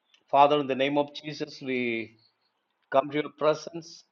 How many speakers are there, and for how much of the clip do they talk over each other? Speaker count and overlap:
one, no overlap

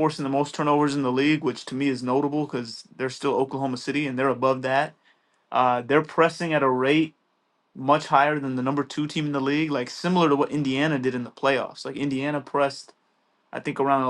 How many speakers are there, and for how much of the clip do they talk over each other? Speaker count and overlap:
one, no overlap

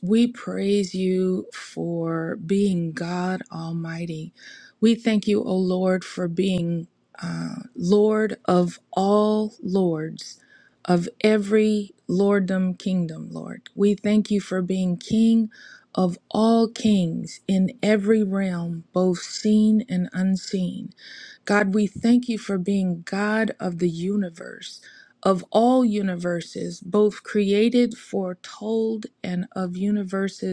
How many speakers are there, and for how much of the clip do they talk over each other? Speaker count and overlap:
one, no overlap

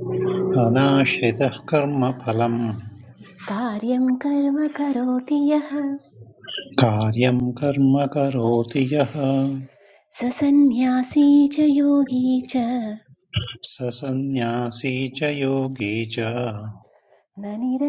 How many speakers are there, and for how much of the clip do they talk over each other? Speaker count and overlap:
two, no overlap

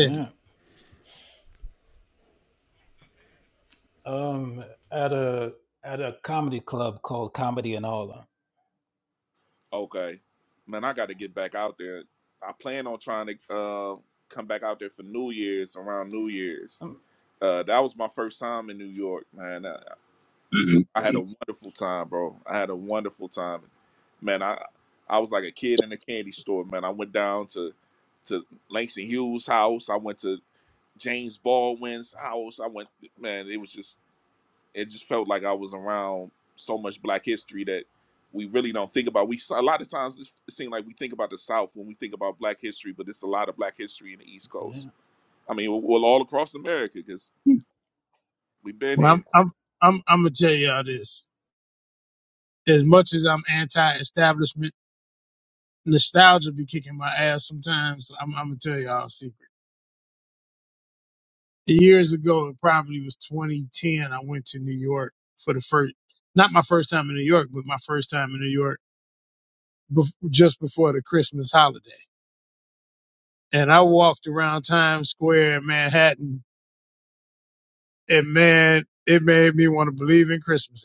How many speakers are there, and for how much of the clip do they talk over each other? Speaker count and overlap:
three, about 1%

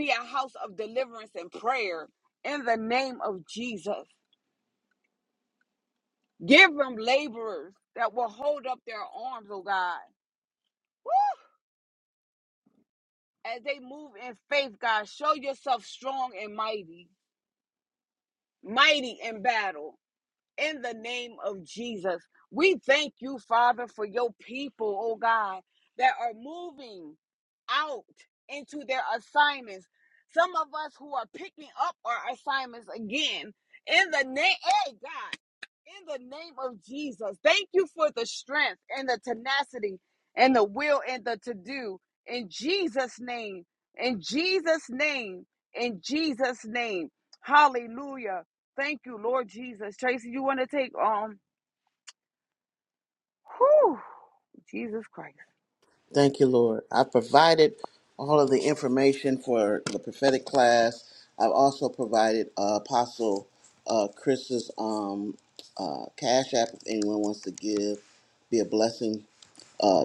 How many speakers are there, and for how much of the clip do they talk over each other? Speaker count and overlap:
two, no overlap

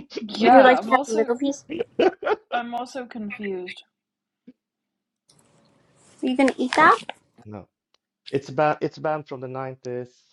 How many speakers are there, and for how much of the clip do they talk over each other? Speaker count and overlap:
three, about 9%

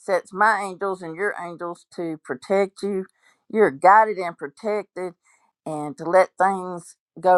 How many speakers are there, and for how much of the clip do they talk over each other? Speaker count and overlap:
one, no overlap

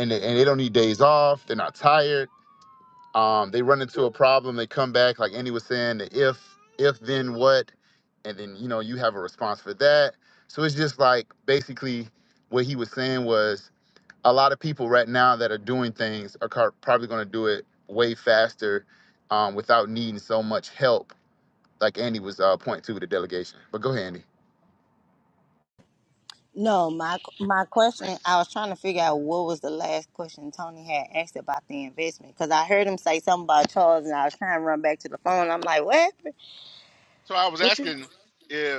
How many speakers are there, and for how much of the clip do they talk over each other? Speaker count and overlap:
three, about 1%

